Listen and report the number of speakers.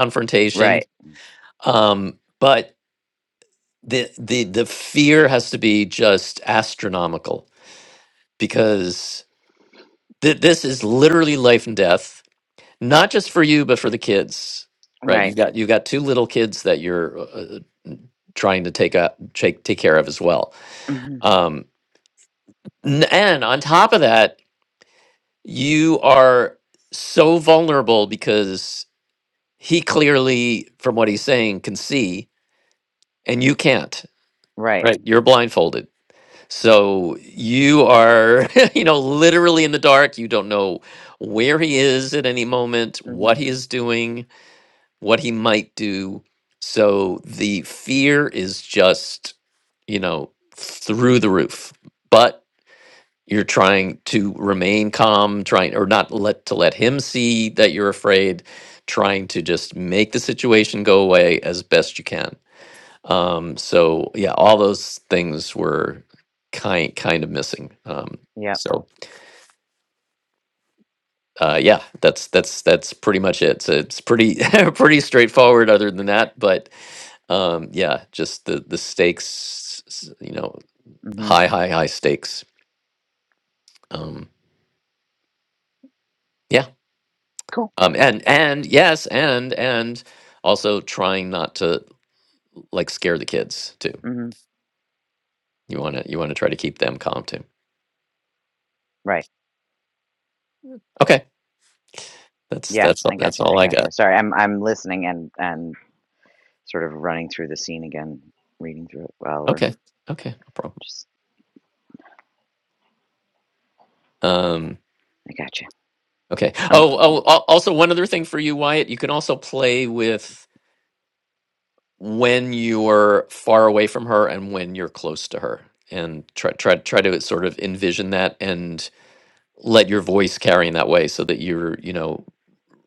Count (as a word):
two